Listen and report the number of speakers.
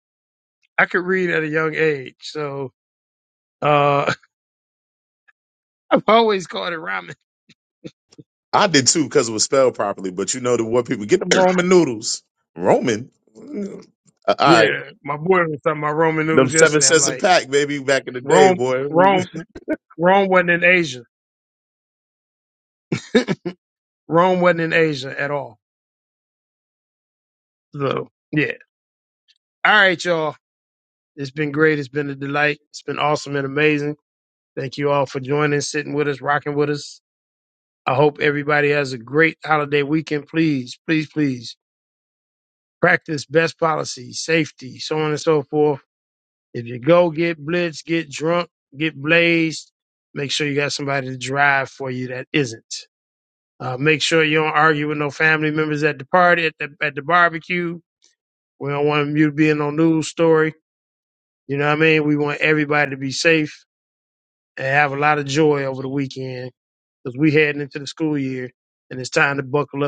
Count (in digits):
2